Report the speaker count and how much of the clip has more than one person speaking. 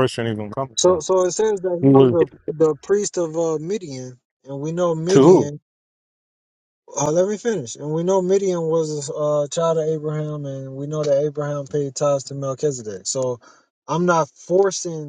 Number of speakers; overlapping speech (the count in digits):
2, about 6%